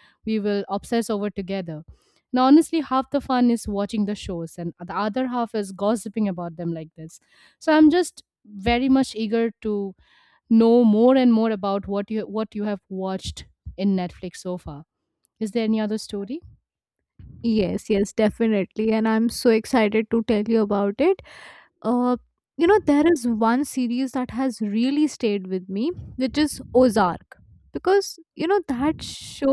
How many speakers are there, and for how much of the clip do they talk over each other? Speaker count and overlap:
two, no overlap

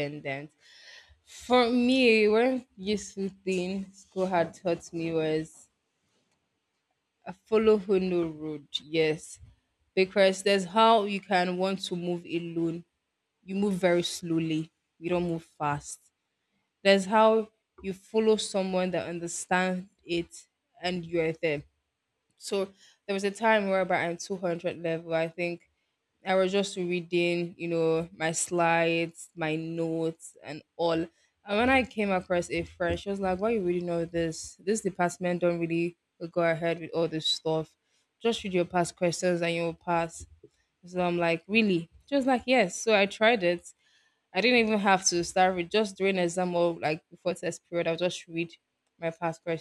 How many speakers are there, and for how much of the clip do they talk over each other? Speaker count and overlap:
one, no overlap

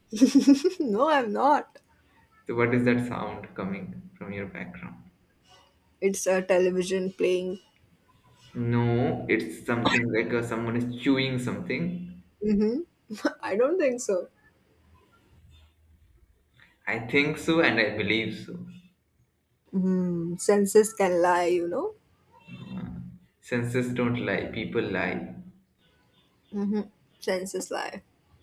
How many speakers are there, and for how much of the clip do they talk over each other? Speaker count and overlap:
two, no overlap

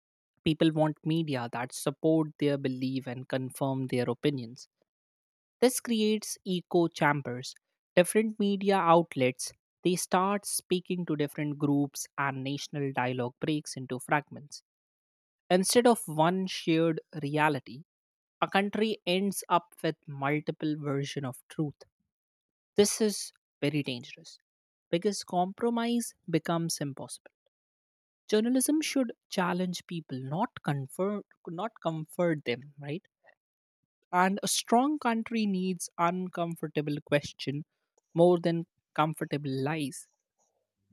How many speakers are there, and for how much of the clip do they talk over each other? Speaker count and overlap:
one, no overlap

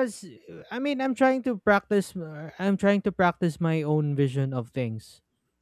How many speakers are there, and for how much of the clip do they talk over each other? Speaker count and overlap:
one, no overlap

